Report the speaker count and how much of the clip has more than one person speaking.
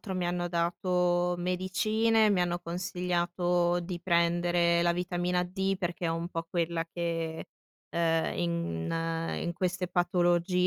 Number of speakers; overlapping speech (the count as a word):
one, no overlap